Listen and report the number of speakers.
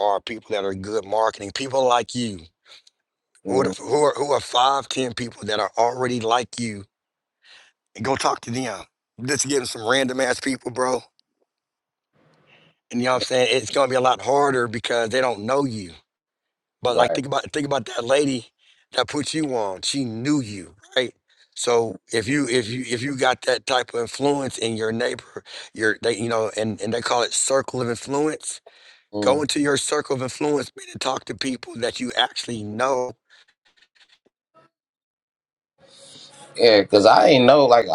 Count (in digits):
2